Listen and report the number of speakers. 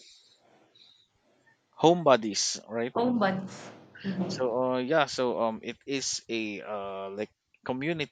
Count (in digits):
2